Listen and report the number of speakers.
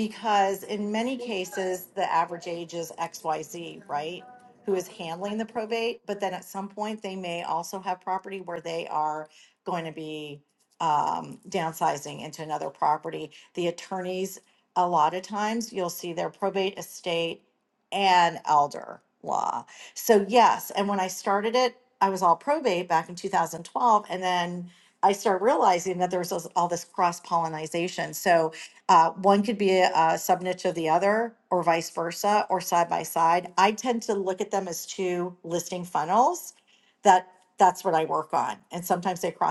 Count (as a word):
one